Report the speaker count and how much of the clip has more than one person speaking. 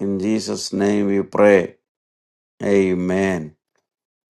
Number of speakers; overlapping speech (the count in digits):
1, no overlap